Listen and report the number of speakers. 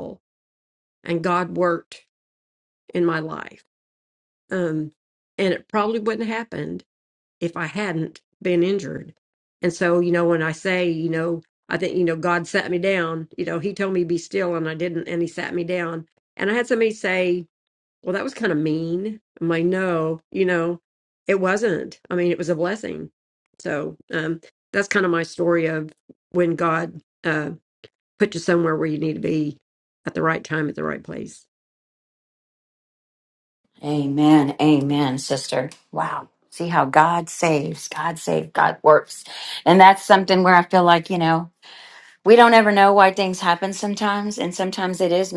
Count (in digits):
2